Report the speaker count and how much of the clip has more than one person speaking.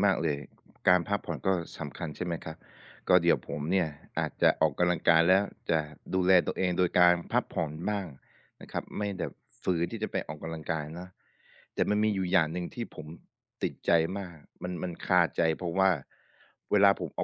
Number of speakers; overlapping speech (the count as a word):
one, no overlap